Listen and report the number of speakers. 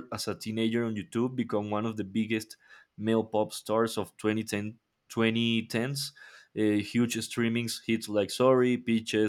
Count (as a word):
one